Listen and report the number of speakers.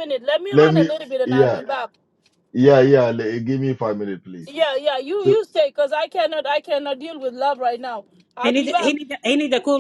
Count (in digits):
3